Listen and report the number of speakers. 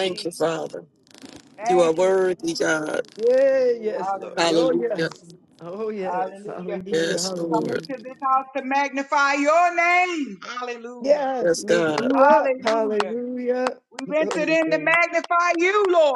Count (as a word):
three